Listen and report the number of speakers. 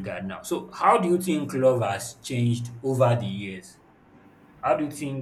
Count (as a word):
one